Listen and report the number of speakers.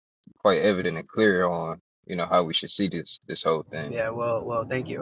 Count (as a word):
two